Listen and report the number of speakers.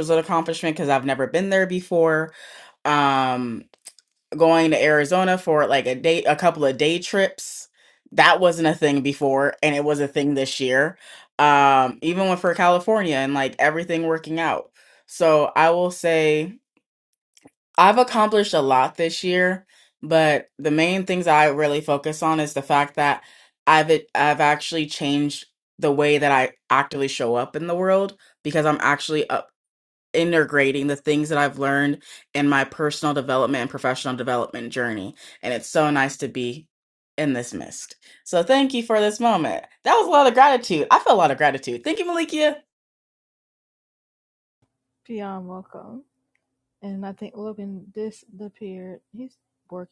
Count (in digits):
2